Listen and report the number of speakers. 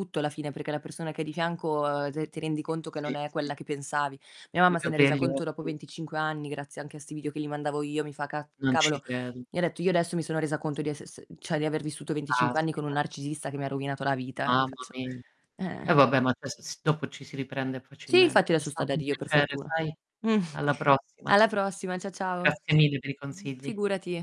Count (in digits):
2